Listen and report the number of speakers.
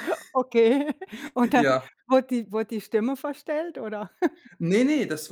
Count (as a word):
two